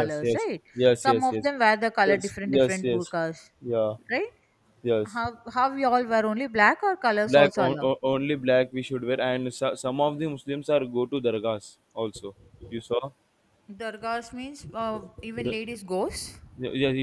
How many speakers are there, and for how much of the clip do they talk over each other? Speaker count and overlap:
2, about 16%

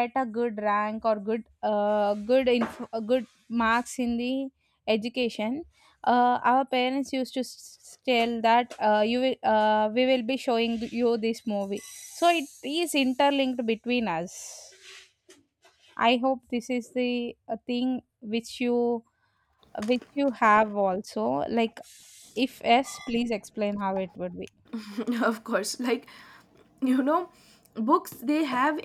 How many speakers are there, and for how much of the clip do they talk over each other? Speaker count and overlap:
2, no overlap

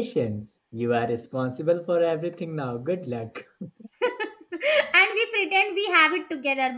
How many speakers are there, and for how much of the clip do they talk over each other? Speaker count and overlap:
2, no overlap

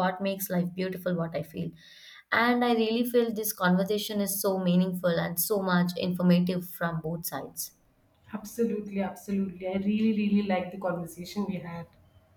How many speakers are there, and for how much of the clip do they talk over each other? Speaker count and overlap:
2, no overlap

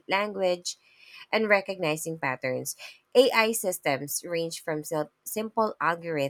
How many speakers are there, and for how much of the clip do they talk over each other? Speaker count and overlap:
1, no overlap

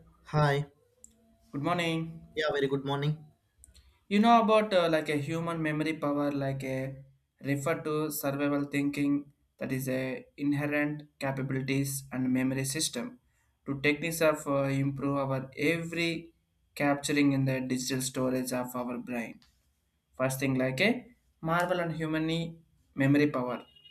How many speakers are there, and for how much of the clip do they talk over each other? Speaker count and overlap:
2, no overlap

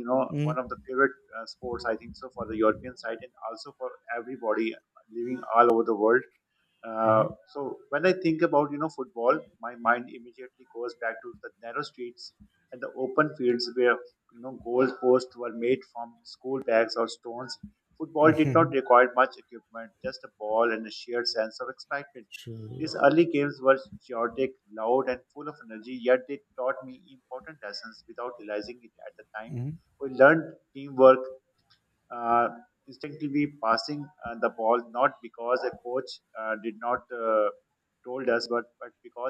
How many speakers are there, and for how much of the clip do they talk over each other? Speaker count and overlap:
2, about 1%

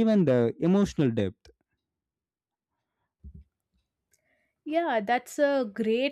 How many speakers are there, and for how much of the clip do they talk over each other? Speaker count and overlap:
2, no overlap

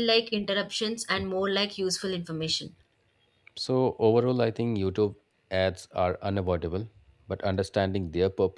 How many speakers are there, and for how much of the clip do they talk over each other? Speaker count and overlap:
2, no overlap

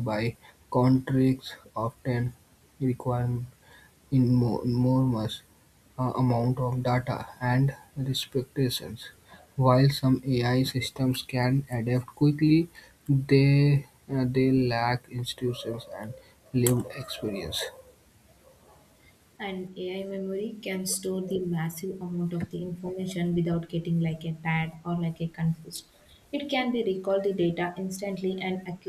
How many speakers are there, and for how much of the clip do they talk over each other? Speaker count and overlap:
2, no overlap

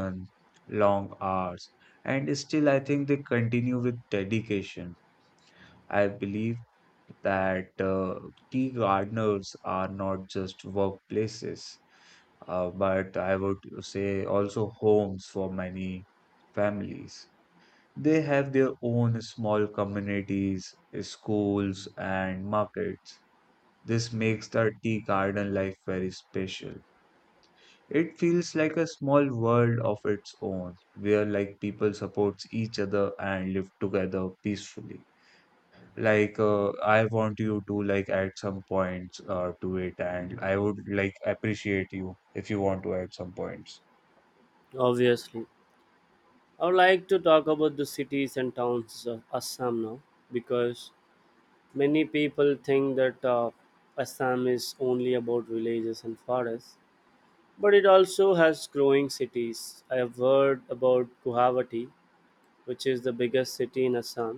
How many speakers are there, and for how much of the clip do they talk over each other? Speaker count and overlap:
2, no overlap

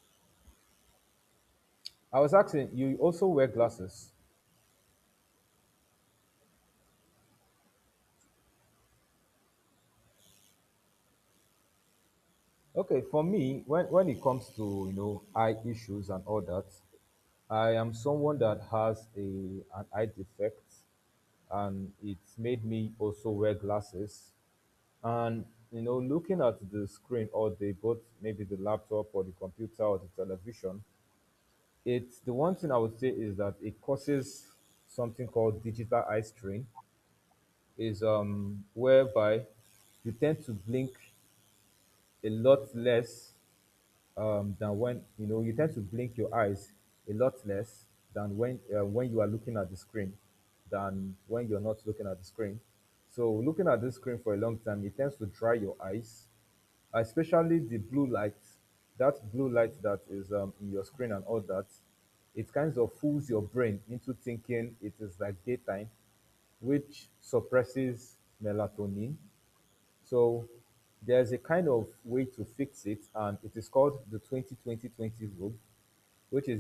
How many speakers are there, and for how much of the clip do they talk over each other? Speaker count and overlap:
1, no overlap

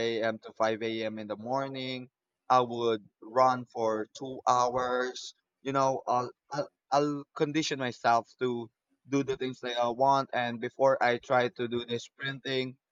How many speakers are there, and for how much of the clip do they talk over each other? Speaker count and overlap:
1, no overlap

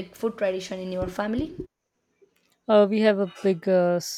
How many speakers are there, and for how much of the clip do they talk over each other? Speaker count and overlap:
2, no overlap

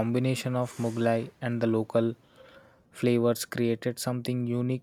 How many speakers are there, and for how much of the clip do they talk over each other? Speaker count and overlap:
1, no overlap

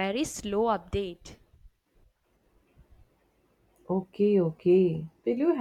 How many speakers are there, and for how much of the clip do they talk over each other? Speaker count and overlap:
2, no overlap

